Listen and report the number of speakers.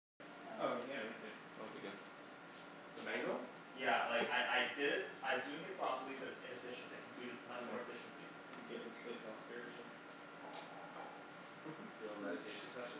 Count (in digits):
3